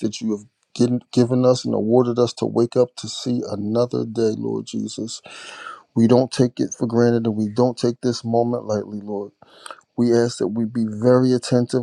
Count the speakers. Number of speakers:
one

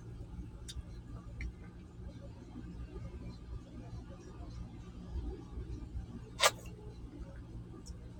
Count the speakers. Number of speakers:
zero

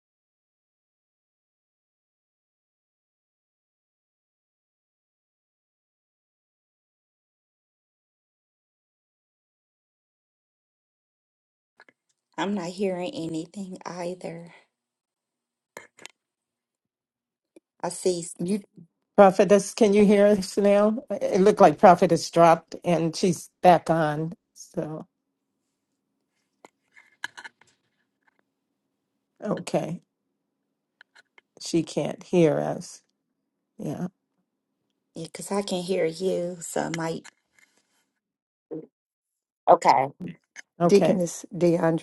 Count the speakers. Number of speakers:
three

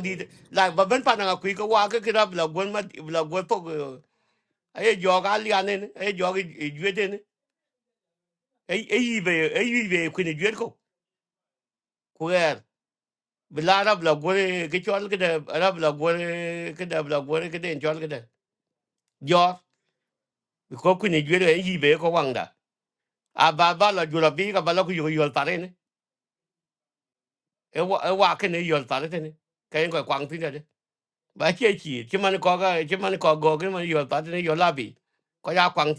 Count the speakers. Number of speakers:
one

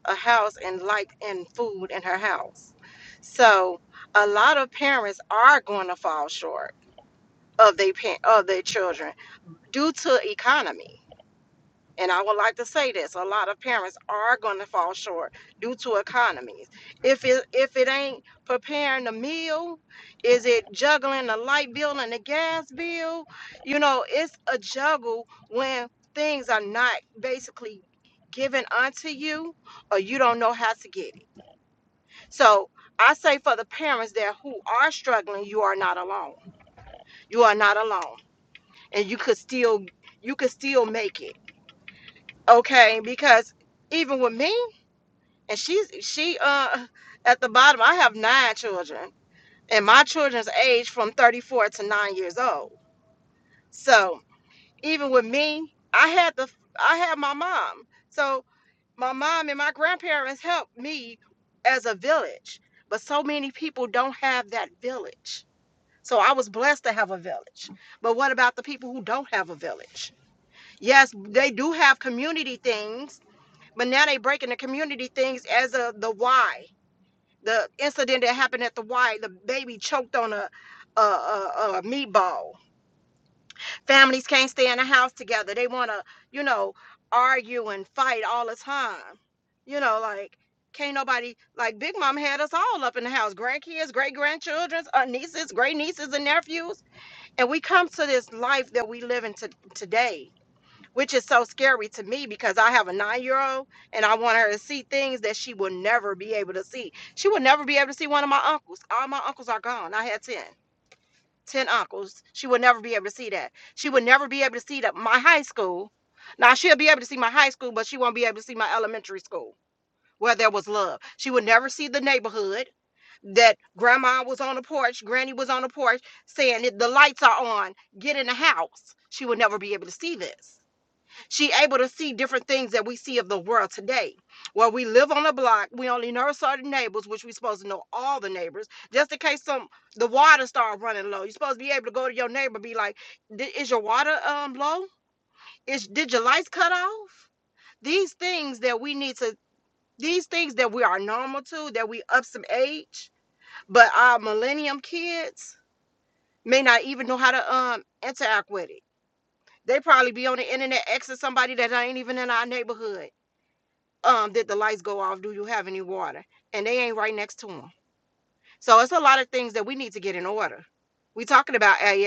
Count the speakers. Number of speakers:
one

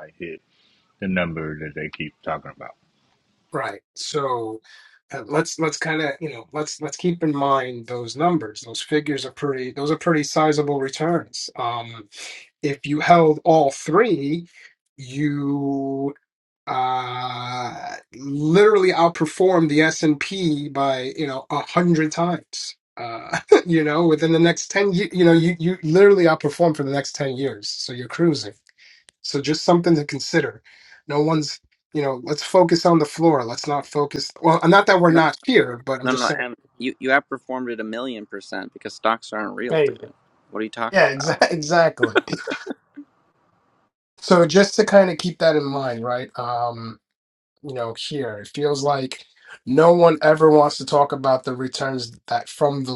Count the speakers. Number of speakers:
three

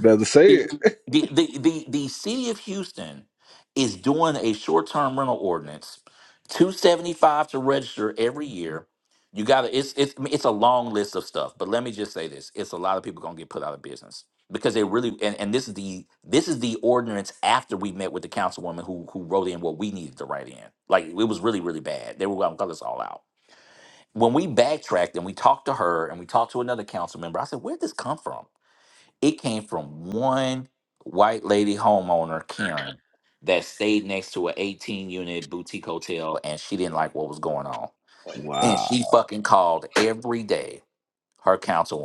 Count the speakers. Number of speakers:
two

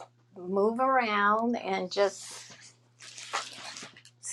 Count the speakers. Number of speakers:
one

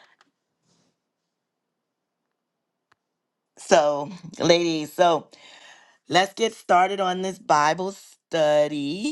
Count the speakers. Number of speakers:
one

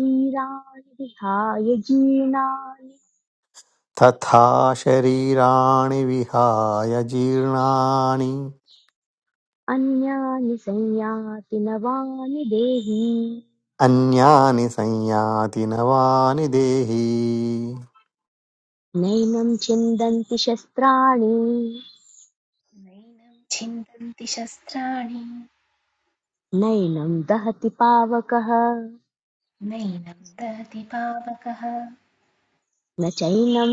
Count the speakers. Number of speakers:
three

